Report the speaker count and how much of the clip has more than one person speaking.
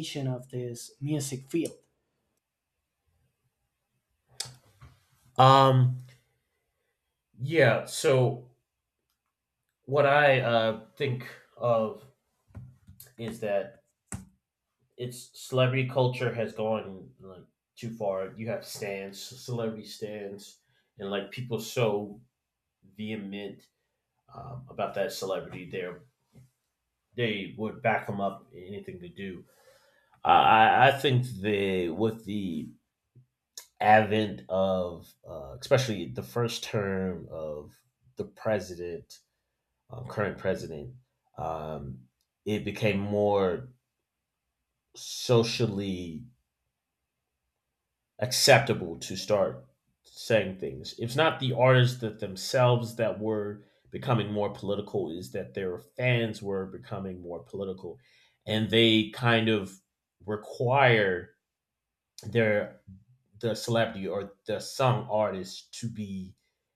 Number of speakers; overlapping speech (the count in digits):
2, no overlap